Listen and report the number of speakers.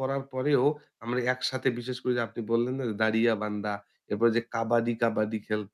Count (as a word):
one